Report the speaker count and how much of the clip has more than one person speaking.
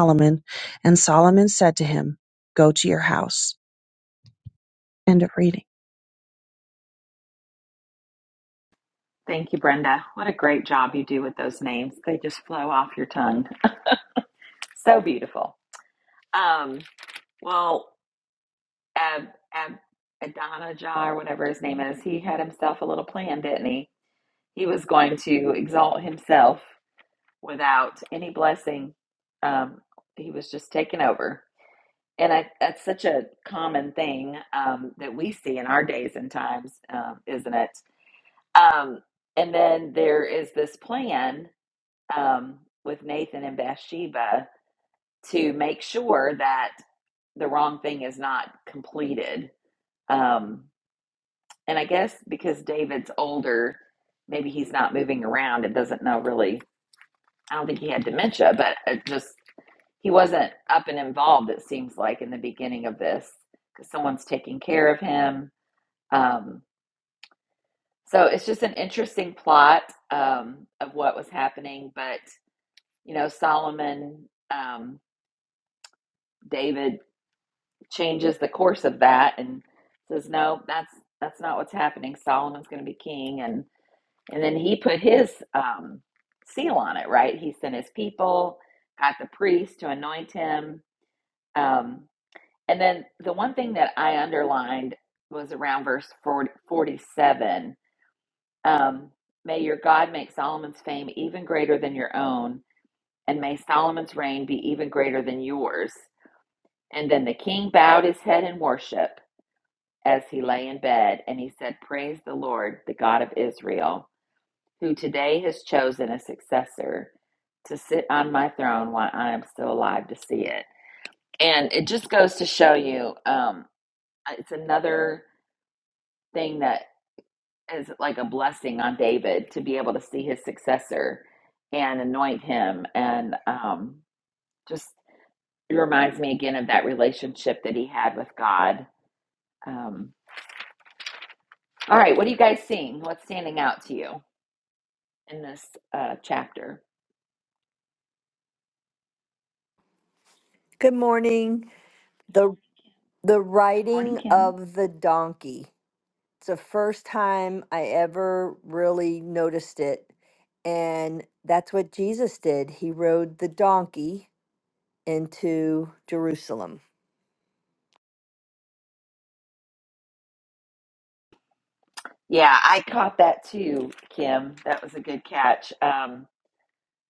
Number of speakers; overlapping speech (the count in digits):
3, under 1%